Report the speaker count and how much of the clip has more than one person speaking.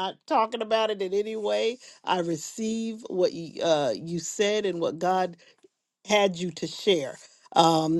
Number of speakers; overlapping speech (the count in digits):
1, no overlap